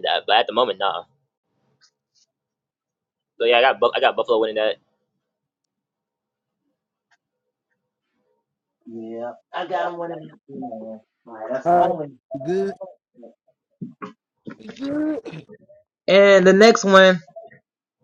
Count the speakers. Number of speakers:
three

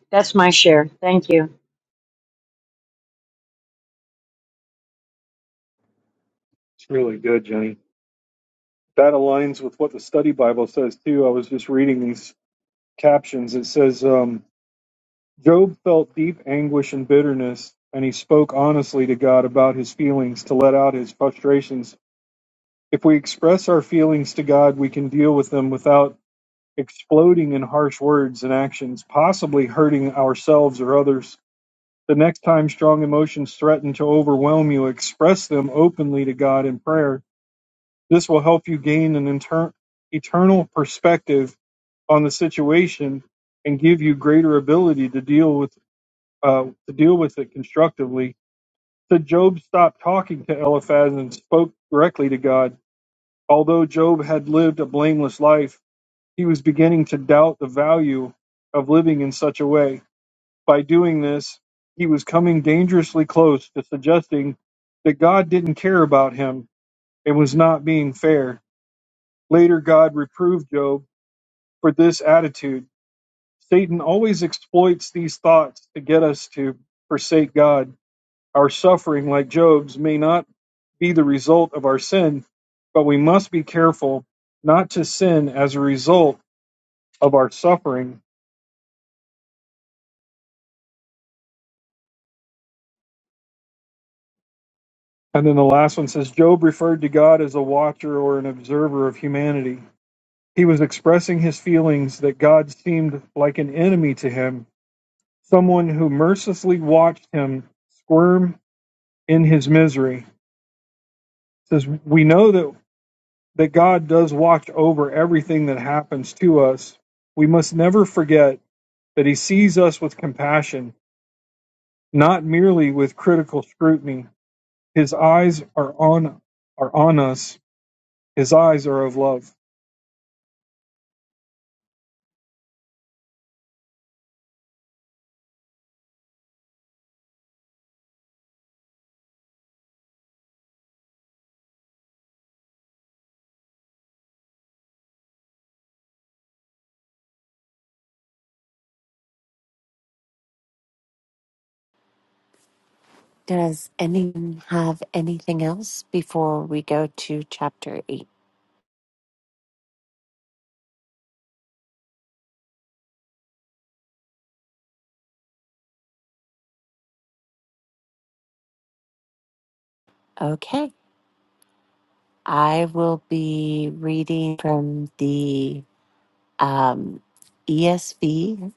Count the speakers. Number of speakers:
three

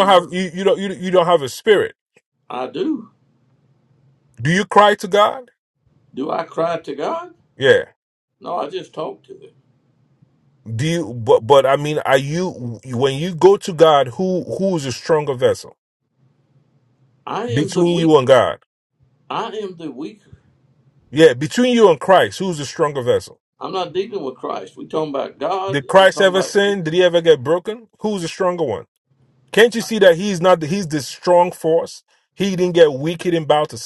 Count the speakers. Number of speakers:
two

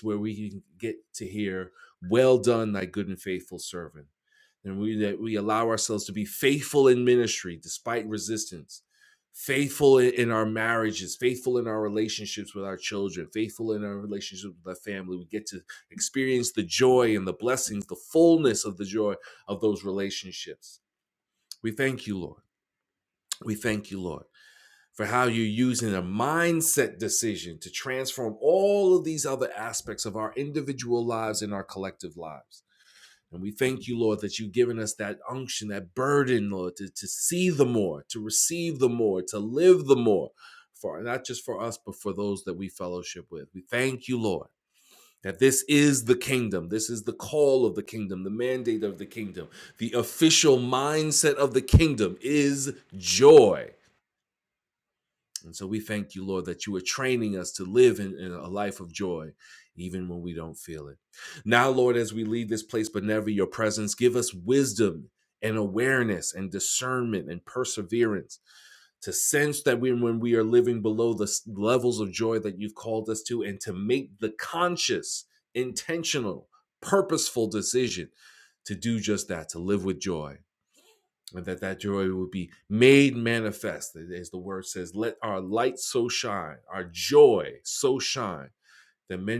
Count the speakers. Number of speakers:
one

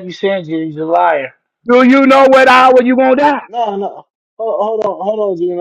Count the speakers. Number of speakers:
three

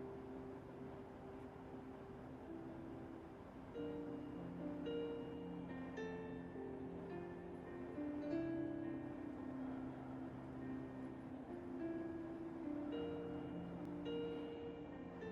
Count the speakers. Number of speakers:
zero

